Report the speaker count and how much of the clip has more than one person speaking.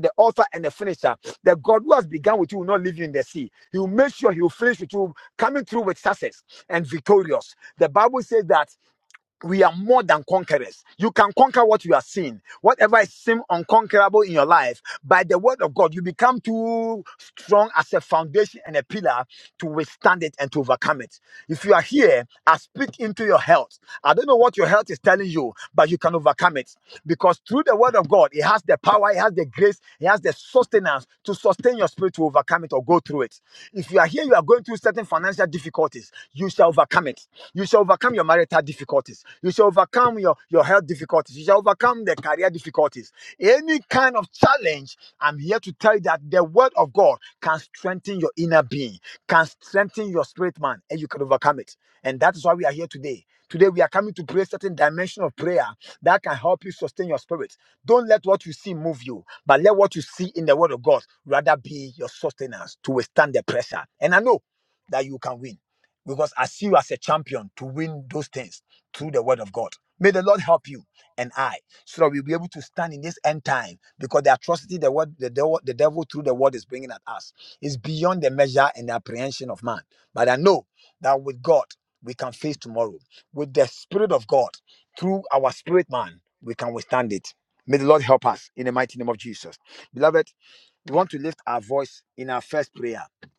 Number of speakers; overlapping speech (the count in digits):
1, no overlap